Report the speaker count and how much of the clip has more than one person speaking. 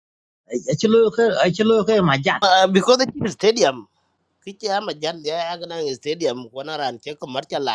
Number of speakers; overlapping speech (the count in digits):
2, no overlap